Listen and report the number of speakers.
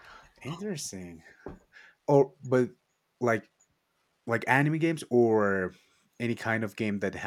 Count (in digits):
1